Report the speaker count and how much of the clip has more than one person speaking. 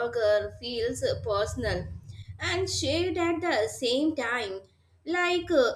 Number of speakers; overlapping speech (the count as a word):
one, no overlap